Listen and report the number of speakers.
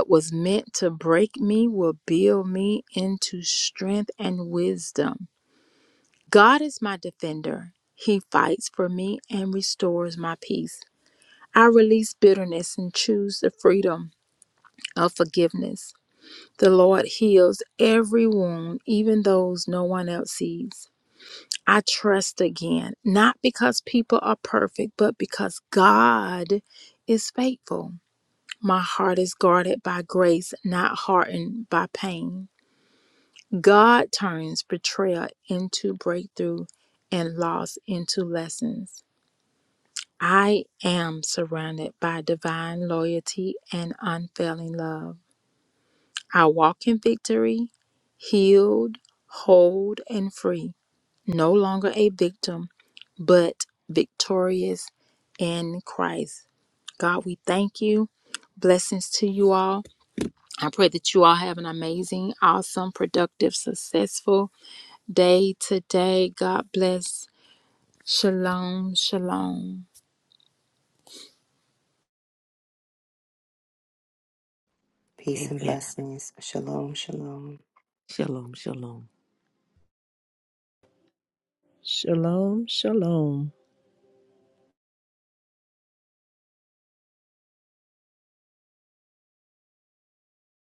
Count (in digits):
4